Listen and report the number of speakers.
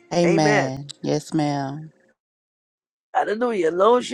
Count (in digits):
2